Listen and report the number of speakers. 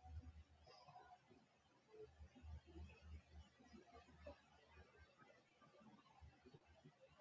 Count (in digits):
0